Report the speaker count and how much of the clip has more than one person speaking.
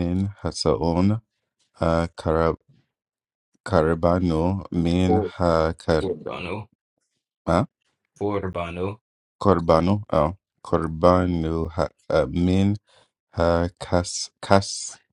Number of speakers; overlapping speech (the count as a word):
two, about 2%